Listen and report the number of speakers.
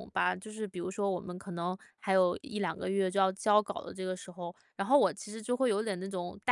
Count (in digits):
1